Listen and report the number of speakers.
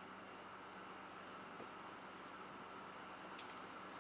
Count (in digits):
0